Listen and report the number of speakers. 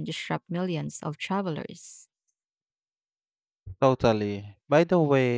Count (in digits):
2